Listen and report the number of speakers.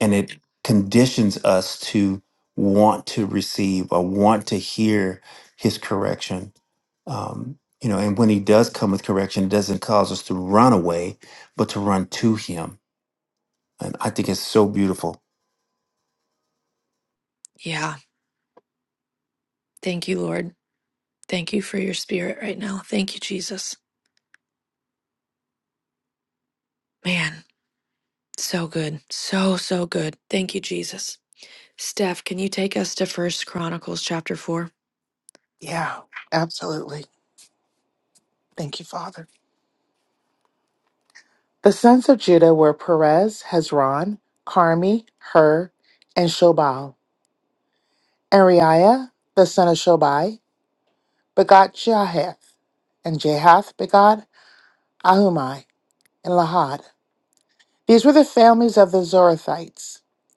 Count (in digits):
3